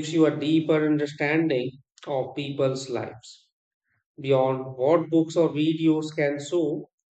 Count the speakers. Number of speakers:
1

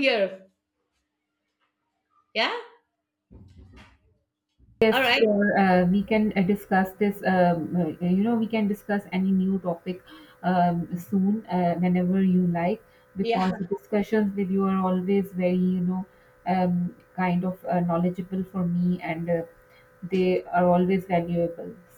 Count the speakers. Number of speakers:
2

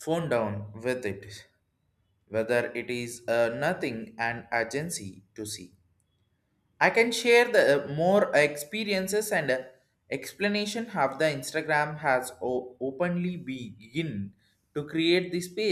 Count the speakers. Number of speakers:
1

